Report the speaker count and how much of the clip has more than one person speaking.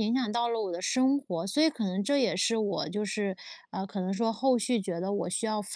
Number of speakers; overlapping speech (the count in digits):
1, no overlap